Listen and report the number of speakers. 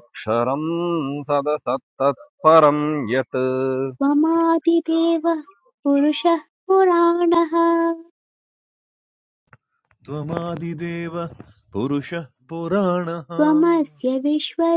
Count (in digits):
3